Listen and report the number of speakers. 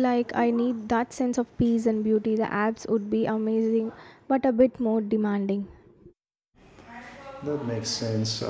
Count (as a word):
two